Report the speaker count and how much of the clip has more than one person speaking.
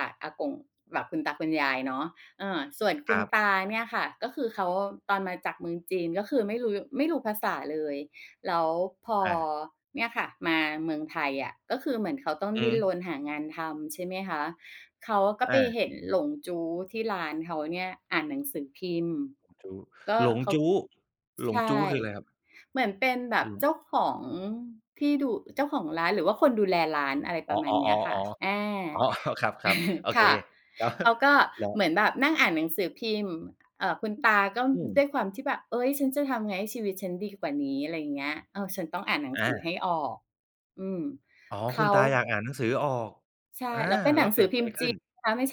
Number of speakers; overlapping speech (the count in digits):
2, about 9%